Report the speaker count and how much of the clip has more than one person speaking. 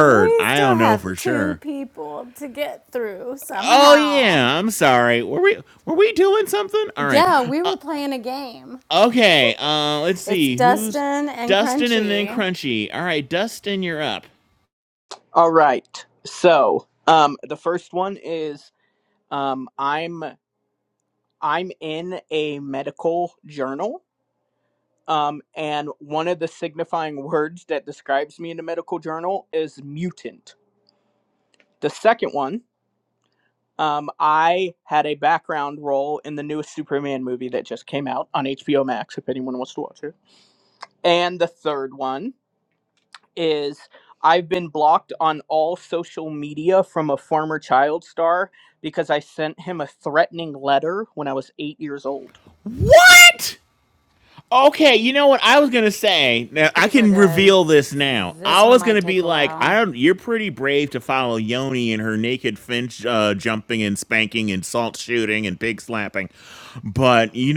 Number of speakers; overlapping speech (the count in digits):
3, about 10%